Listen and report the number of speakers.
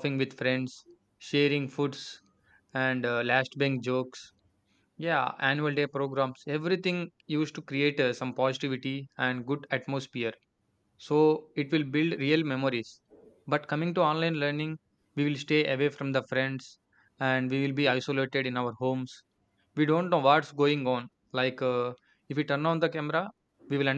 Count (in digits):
1